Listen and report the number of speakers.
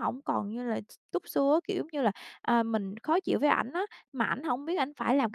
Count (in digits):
1